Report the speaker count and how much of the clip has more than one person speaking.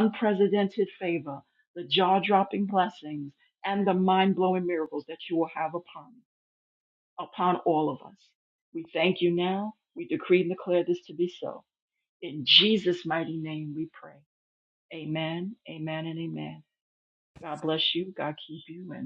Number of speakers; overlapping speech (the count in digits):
1, no overlap